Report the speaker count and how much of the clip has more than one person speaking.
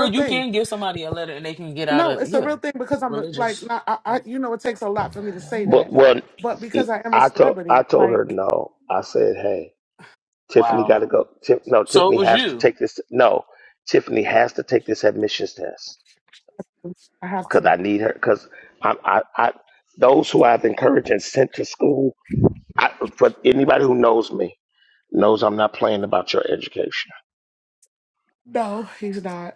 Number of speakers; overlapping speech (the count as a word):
three, about 15%